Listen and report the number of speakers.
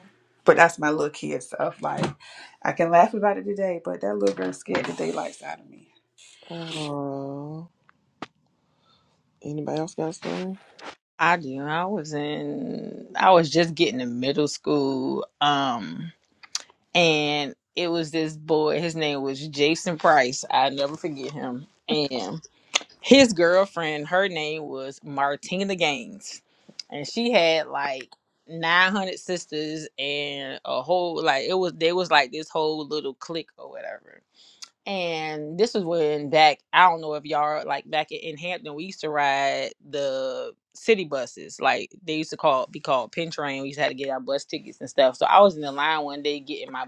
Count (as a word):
three